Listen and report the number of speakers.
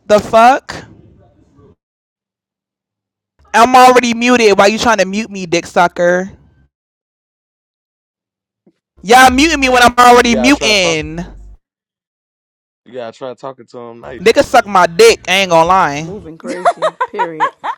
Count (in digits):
3